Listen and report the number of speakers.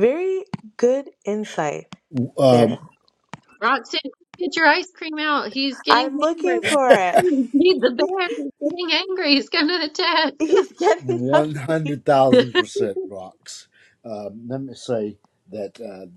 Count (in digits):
3